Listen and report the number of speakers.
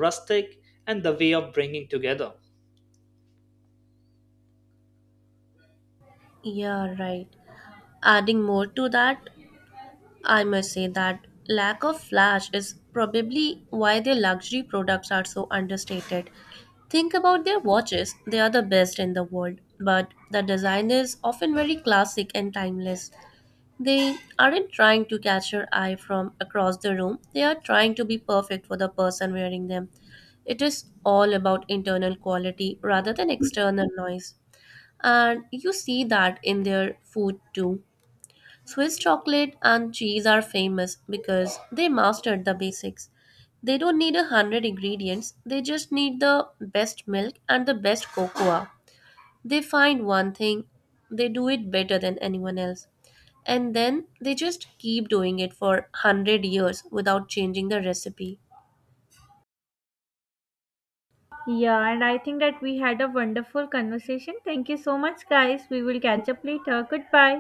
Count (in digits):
3